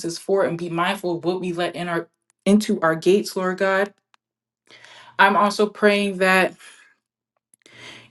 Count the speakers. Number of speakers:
1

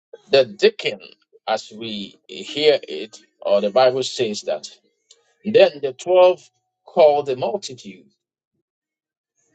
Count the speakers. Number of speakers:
1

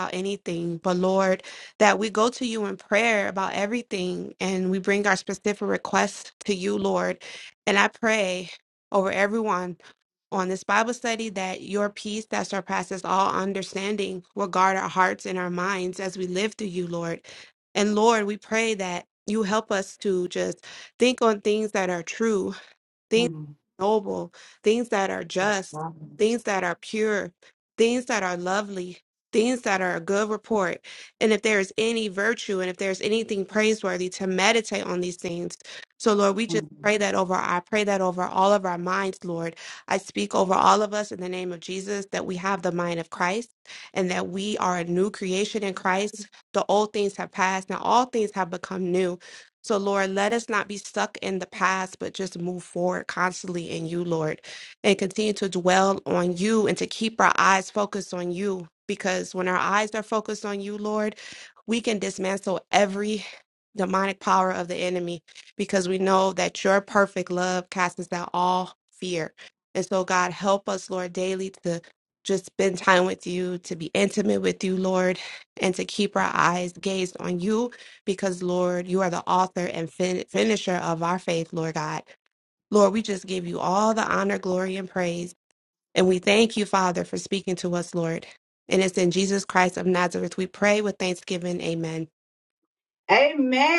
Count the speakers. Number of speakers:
2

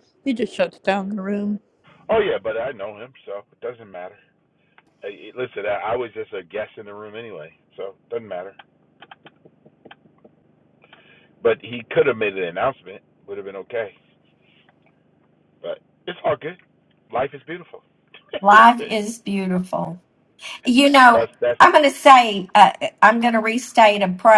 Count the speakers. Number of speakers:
3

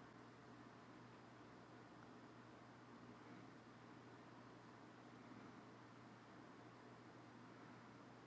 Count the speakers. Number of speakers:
0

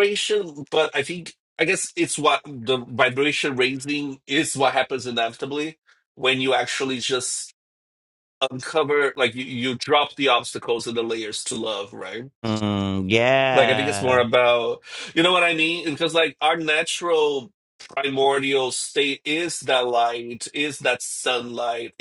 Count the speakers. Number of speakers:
2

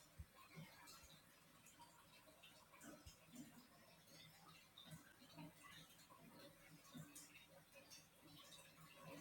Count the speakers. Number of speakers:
0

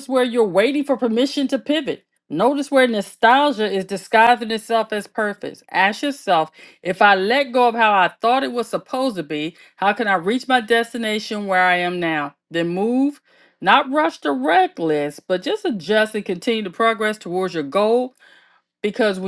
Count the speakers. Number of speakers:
1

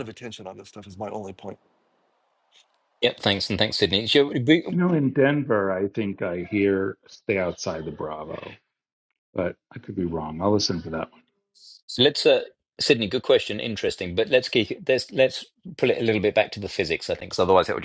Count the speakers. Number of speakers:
3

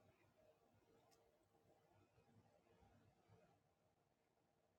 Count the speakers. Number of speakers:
0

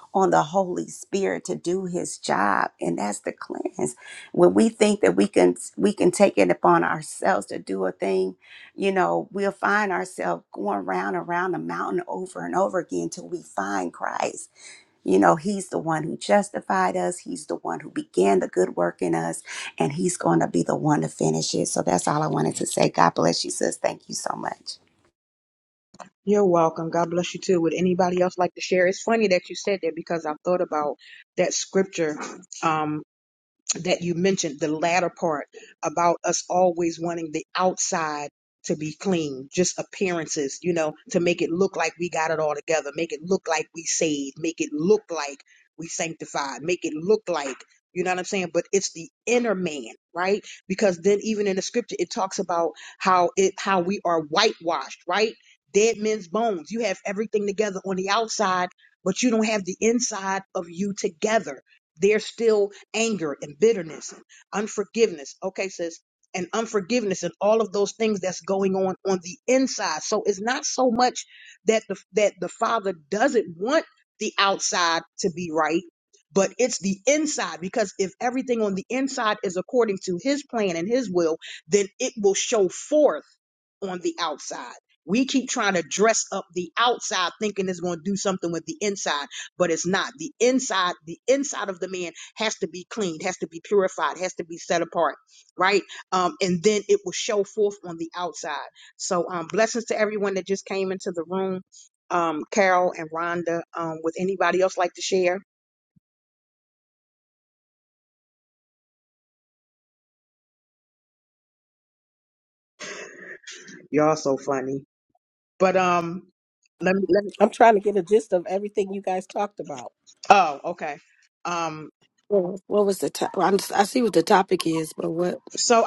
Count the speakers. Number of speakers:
4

